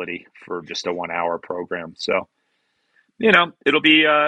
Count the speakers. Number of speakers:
1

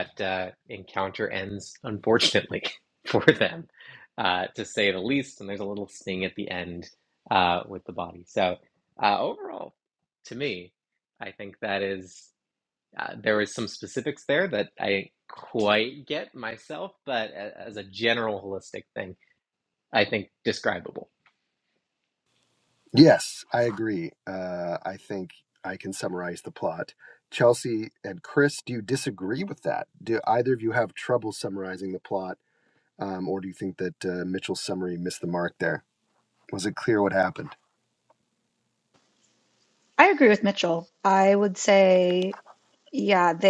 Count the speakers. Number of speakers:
3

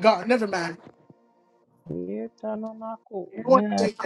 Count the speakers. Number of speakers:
2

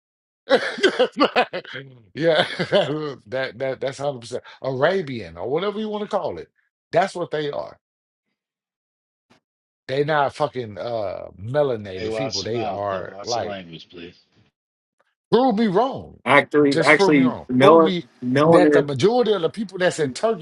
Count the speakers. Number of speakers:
3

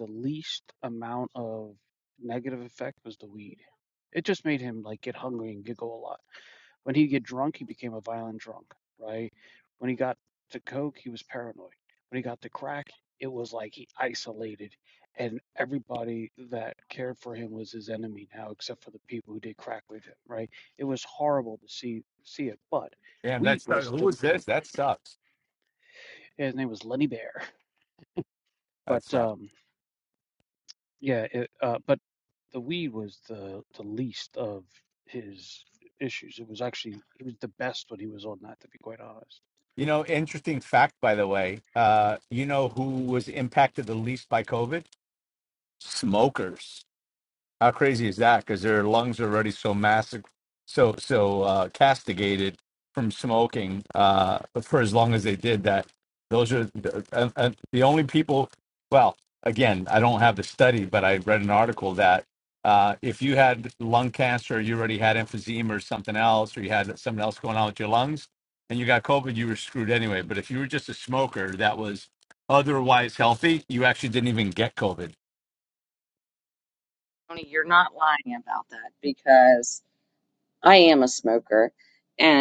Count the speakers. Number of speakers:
3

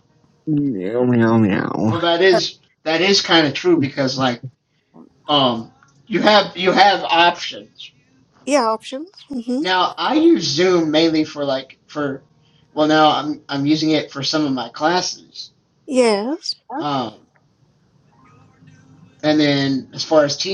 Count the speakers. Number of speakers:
3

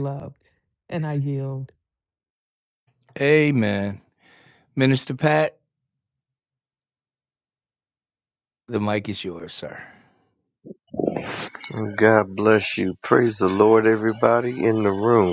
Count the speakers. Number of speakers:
3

